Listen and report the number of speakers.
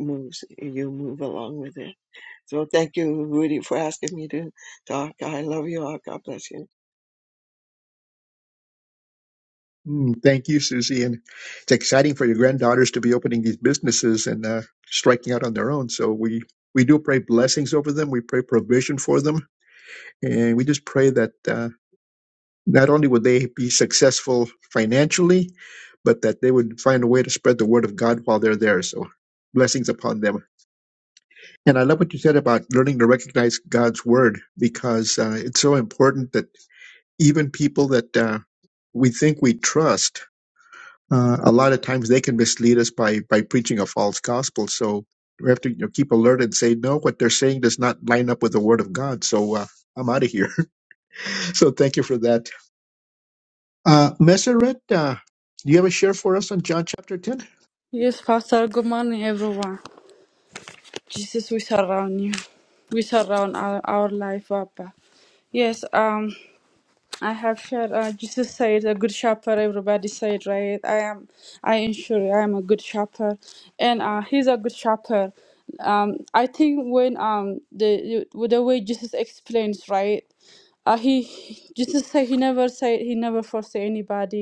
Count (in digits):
3